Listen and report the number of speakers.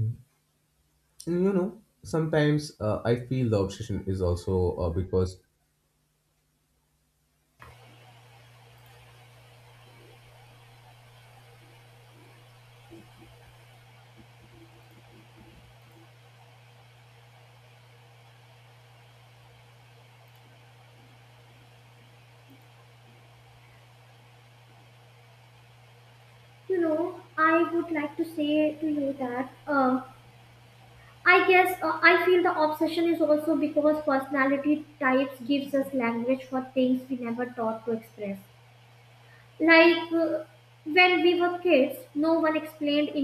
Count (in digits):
2